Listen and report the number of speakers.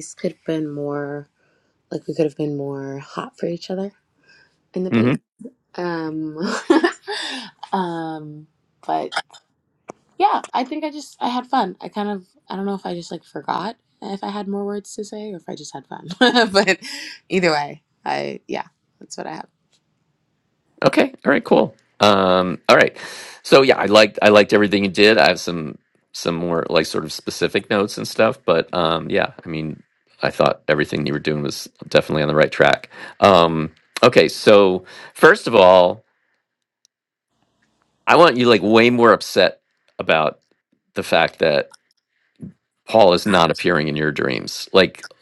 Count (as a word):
two